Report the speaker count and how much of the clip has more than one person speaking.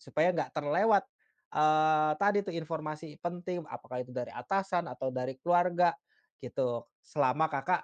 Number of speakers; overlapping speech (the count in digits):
1, no overlap